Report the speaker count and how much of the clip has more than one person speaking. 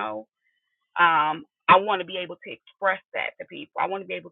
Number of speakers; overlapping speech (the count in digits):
1, no overlap